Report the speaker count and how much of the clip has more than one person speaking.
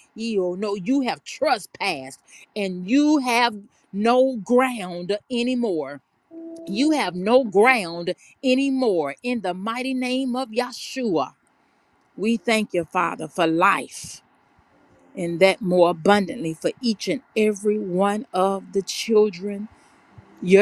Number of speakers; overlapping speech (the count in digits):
1, no overlap